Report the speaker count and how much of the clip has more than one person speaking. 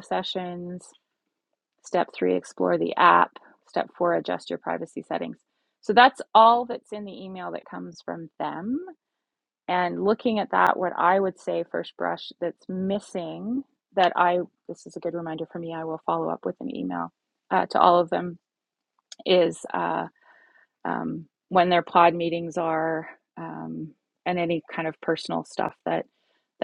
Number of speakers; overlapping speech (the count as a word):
one, no overlap